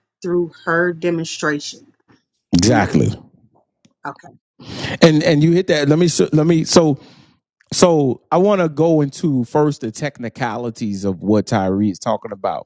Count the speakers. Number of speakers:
2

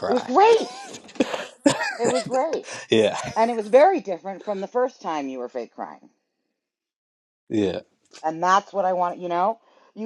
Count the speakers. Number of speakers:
2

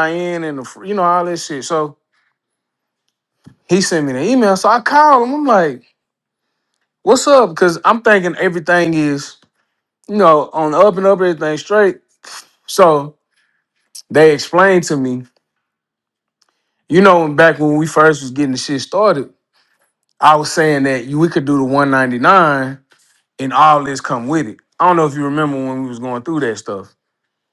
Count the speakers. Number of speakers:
1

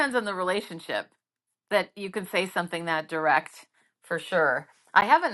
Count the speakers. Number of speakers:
1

